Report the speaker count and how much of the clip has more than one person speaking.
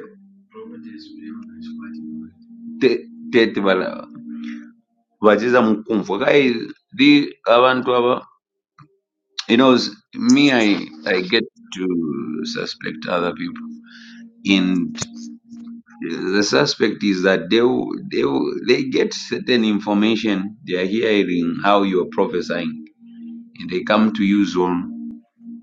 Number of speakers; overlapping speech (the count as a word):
one, no overlap